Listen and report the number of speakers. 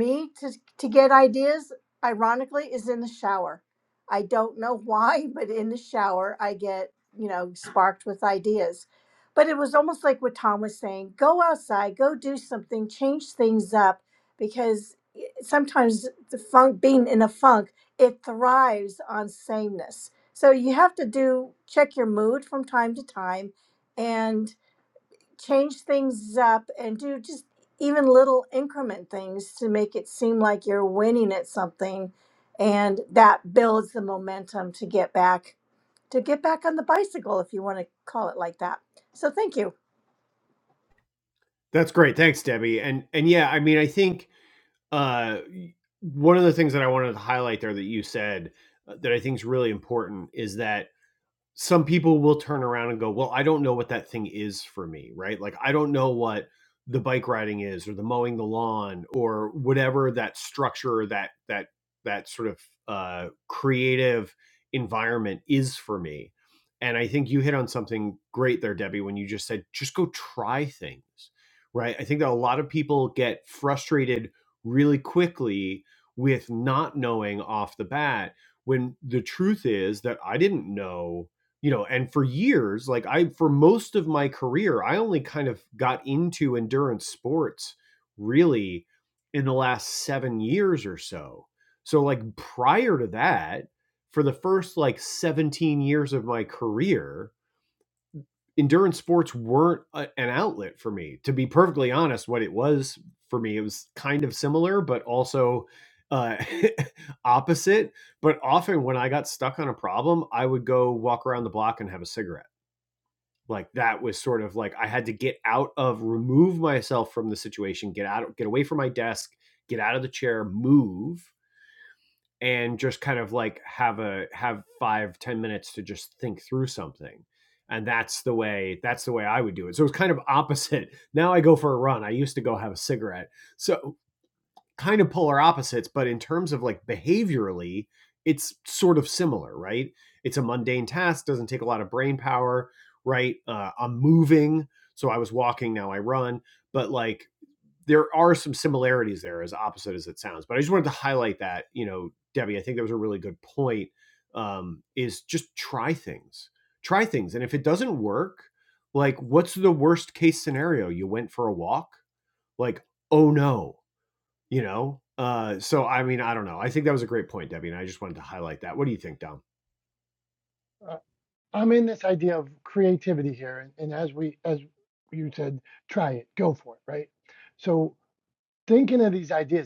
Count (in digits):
3